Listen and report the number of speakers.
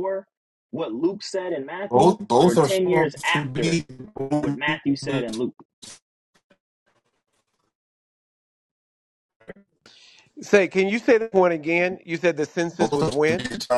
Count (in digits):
3